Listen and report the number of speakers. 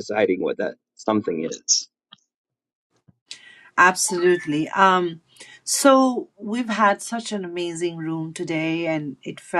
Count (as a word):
two